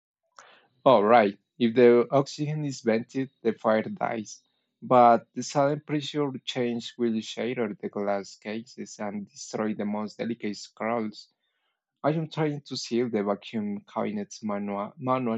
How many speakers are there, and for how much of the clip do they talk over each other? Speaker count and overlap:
1, no overlap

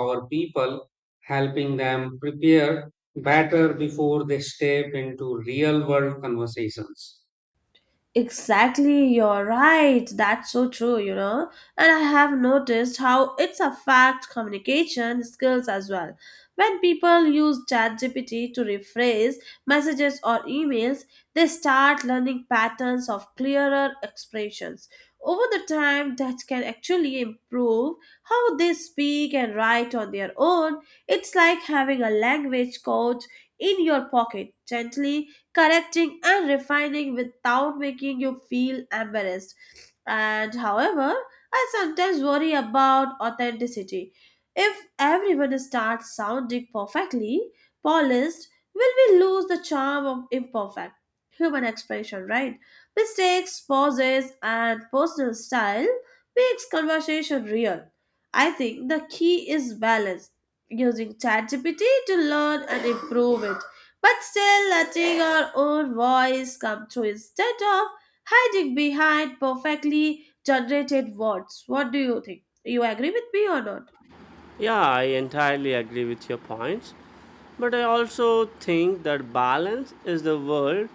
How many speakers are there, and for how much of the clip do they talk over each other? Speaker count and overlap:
3, no overlap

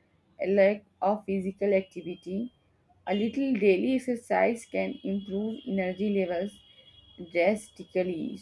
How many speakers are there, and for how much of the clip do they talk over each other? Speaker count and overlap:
1, no overlap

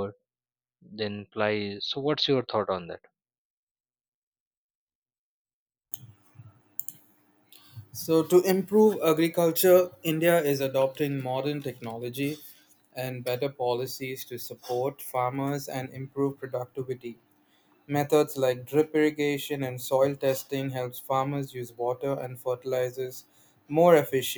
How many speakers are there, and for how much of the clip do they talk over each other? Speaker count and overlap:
2, no overlap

